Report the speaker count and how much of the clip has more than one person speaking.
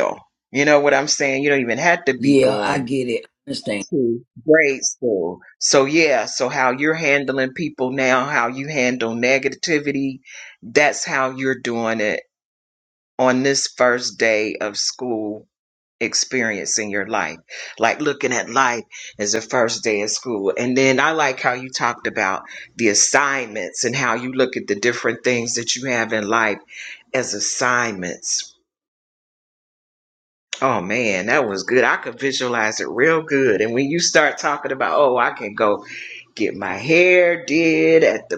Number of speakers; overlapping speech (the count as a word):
two, about 2%